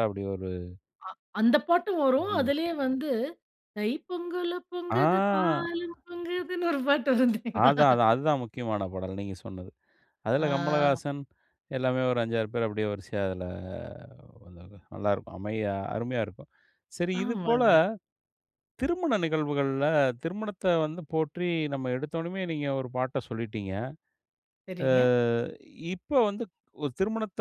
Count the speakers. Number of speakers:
2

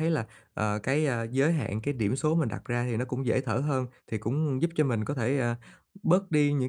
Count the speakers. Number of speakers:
1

